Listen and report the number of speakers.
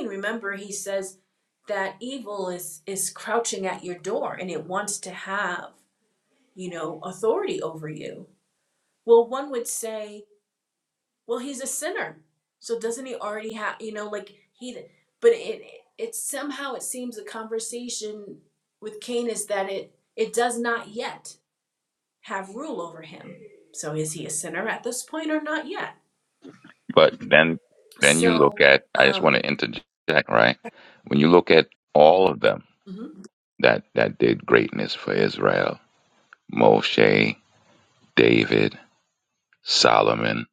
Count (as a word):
two